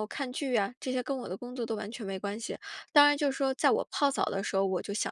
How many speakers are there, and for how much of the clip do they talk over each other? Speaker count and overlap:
one, no overlap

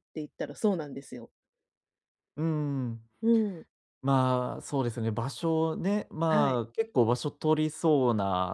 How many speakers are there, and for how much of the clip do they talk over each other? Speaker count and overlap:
two, about 3%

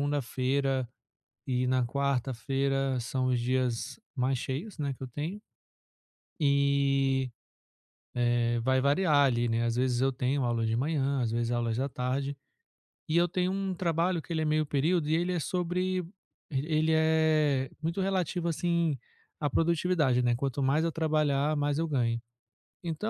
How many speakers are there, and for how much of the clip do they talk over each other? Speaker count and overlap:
one, no overlap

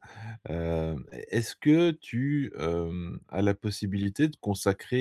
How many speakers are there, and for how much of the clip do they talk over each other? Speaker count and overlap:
one, no overlap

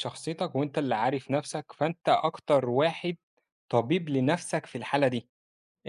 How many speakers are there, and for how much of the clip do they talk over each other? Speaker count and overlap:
one, no overlap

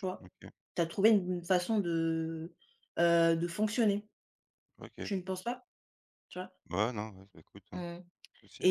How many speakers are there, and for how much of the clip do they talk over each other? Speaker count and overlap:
two, about 2%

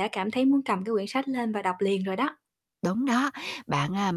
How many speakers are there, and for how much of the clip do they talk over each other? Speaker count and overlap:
two, no overlap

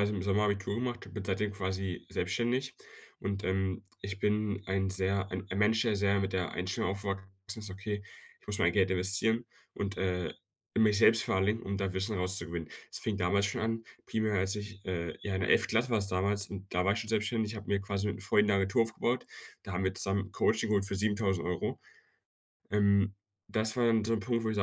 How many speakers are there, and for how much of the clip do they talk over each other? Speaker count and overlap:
one, no overlap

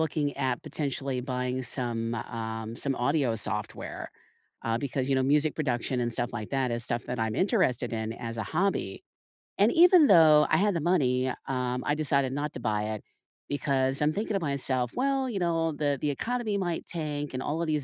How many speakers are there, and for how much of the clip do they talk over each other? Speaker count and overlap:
one, no overlap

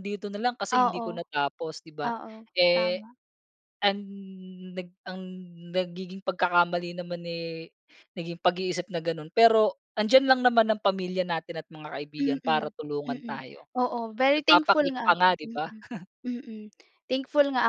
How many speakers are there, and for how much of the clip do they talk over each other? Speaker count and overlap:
two, about 16%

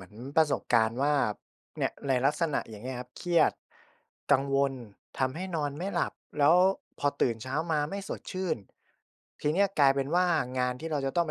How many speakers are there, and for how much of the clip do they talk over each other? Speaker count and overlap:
one, no overlap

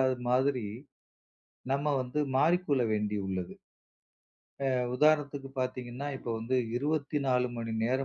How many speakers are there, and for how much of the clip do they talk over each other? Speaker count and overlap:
one, no overlap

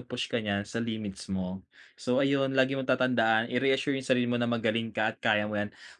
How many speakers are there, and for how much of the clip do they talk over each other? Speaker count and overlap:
one, no overlap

